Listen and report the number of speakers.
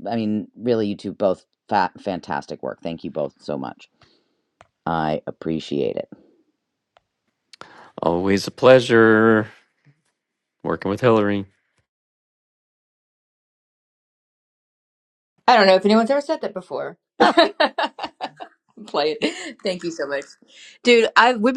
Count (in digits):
3